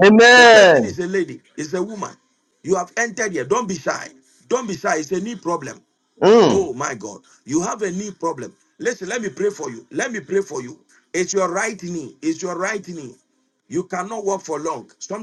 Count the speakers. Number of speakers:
two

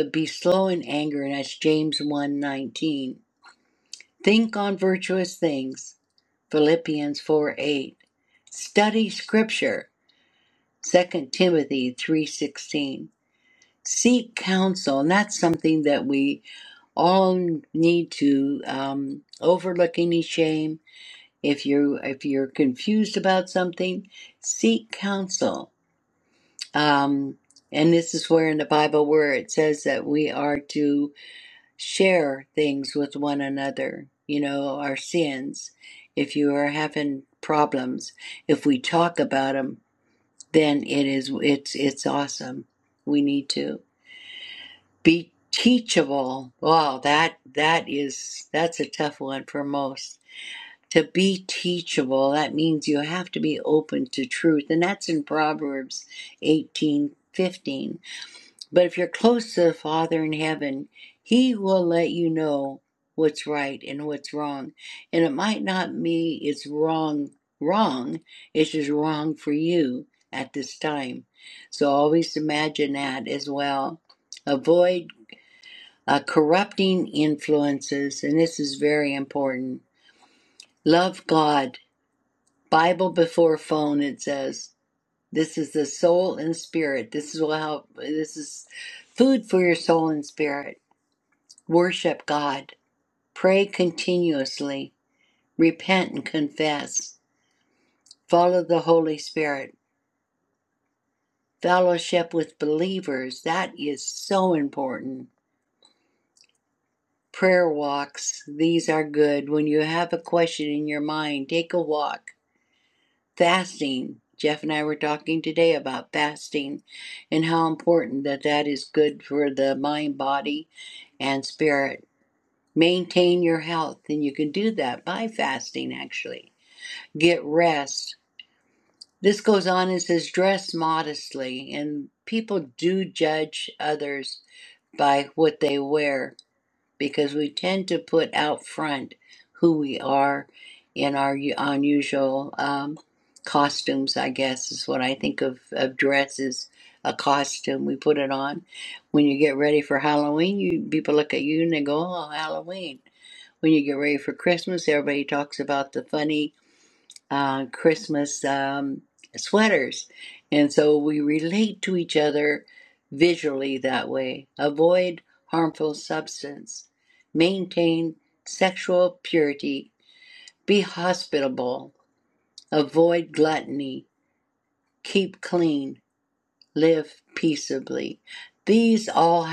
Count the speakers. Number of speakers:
one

